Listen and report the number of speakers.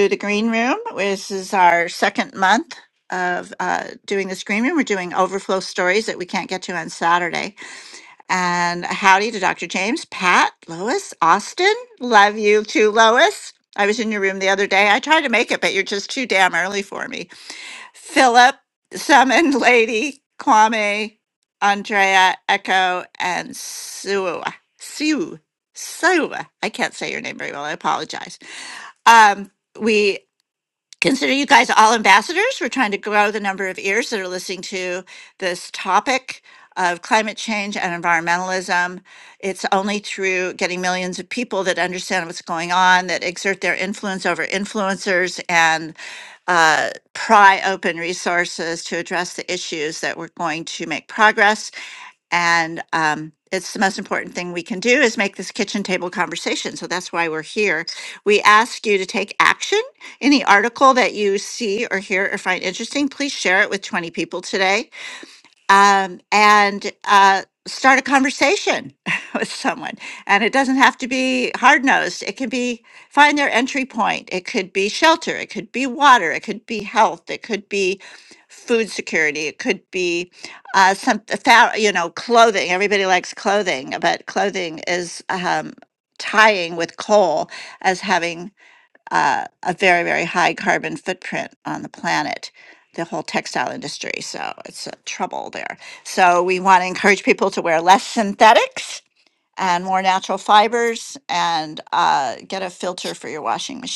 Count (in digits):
1